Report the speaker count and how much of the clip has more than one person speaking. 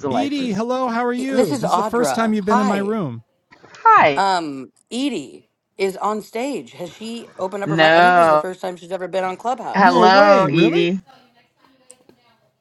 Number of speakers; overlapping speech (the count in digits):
3, about 32%